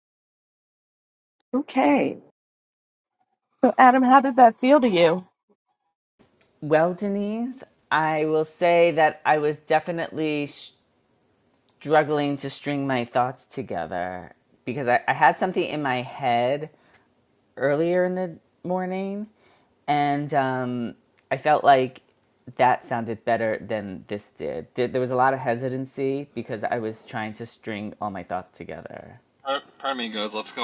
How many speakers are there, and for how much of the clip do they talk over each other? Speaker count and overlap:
3, no overlap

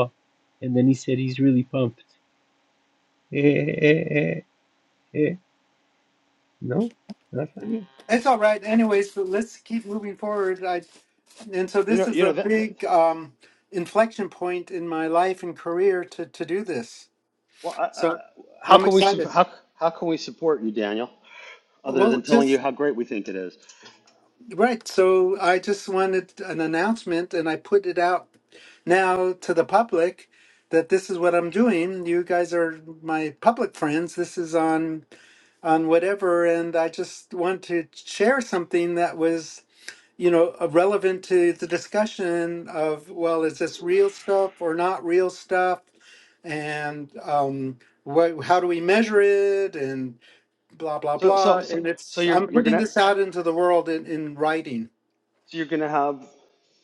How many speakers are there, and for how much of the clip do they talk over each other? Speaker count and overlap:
3, about 6%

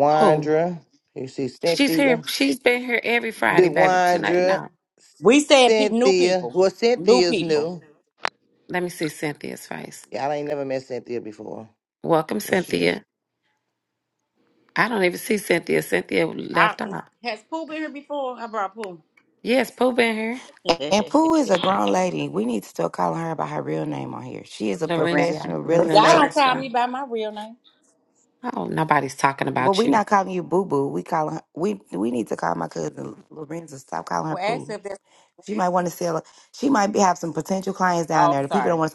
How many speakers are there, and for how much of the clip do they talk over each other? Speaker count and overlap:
4, about 19%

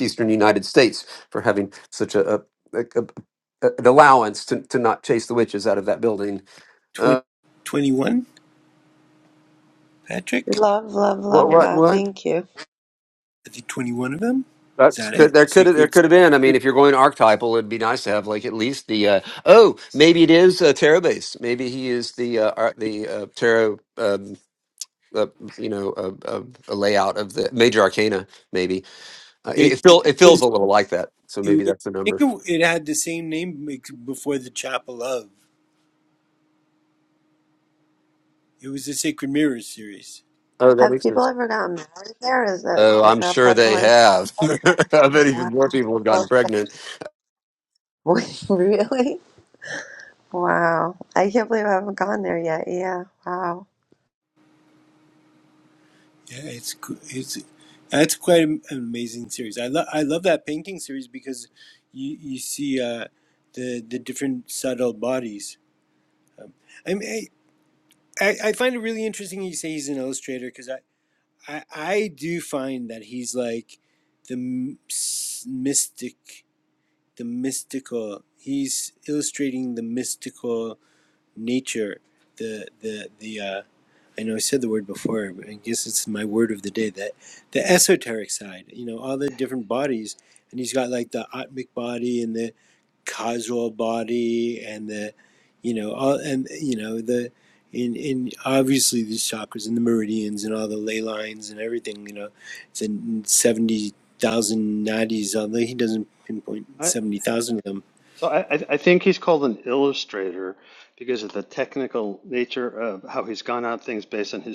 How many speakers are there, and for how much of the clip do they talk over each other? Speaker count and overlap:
4, about 4%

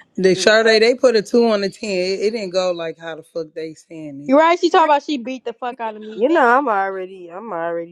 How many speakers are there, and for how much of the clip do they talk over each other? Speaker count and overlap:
3, about 4%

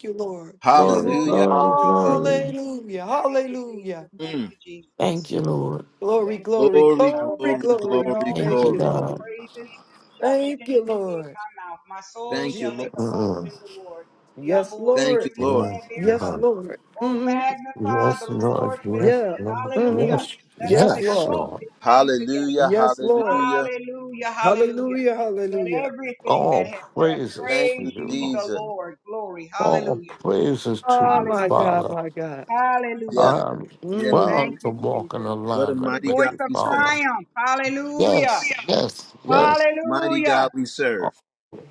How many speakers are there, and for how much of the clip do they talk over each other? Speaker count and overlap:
5, about 61%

